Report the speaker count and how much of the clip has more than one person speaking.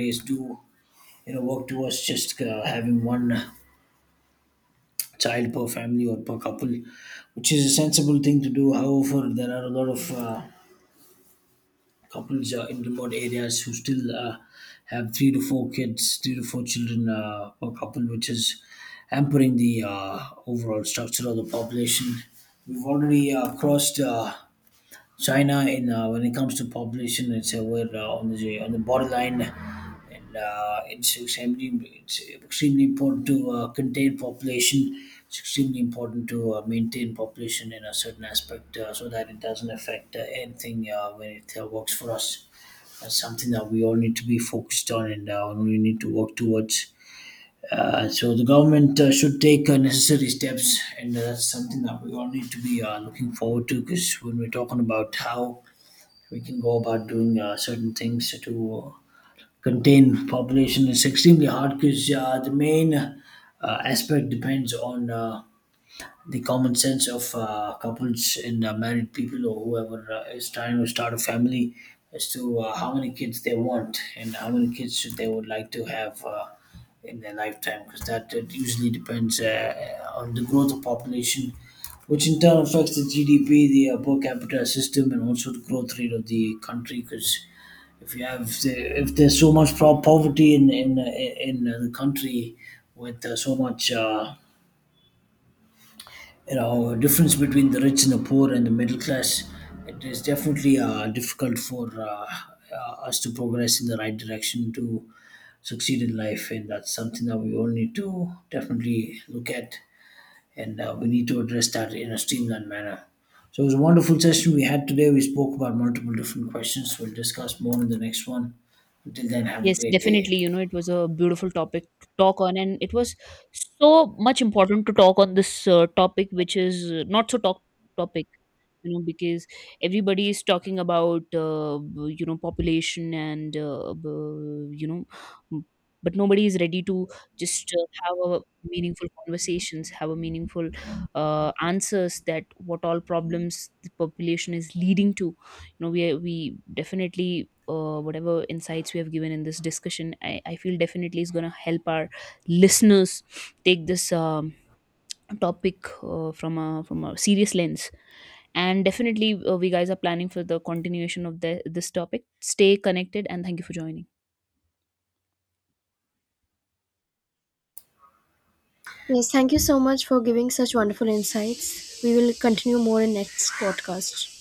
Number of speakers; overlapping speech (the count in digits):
3, under 1%